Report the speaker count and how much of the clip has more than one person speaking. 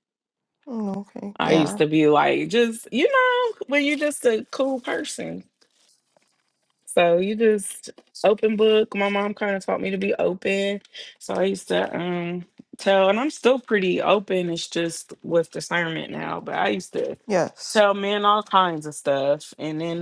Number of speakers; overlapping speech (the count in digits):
2, about 2%